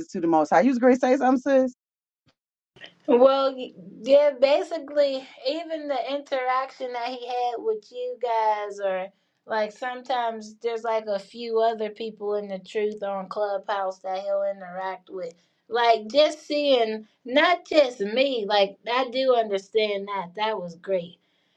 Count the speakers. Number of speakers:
2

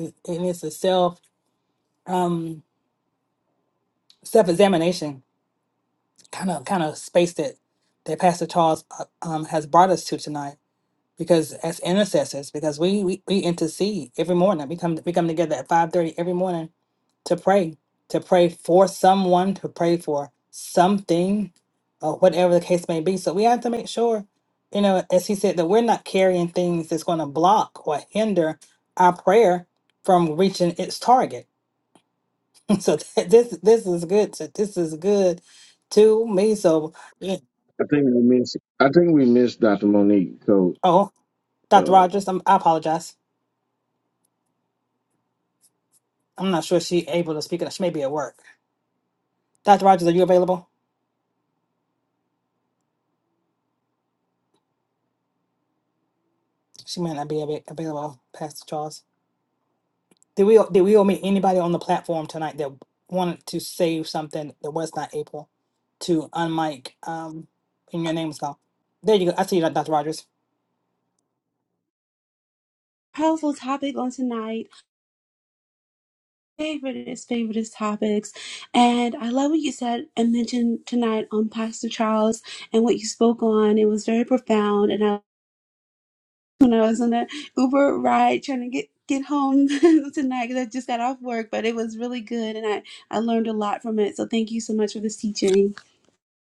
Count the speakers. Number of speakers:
3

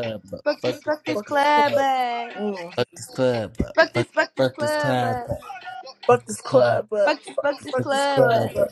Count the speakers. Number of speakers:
3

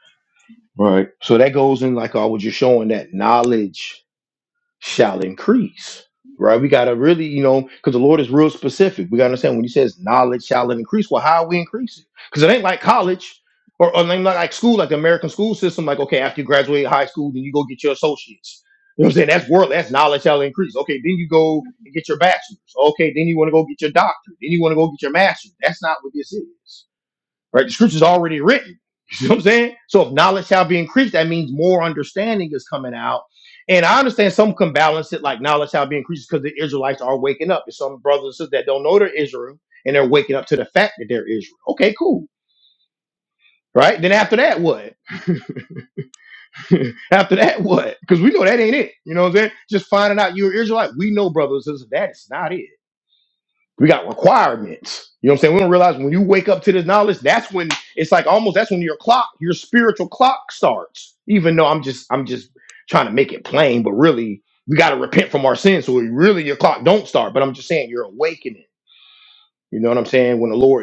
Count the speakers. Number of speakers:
1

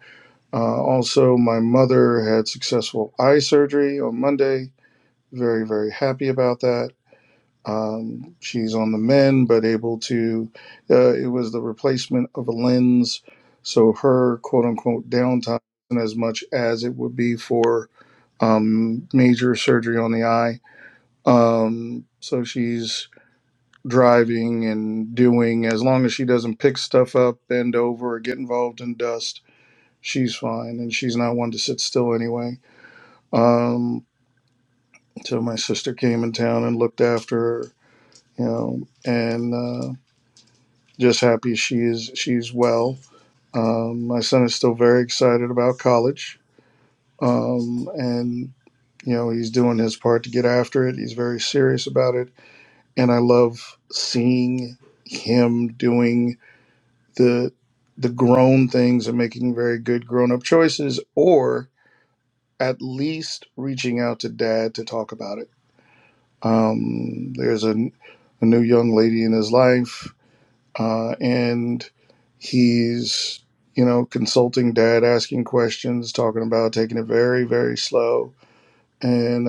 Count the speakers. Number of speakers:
1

